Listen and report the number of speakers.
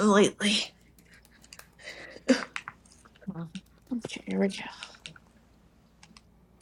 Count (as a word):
one